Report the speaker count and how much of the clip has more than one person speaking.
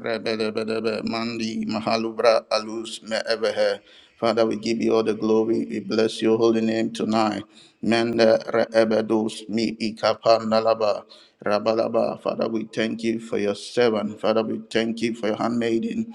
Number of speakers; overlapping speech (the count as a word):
one, no overlap